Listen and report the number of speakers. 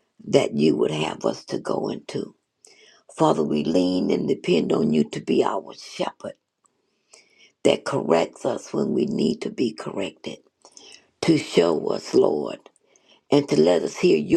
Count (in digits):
1